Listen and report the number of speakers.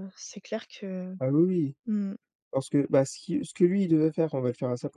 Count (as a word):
two